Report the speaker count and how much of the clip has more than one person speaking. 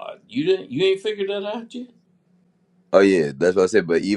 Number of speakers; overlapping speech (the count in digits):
2, no overlap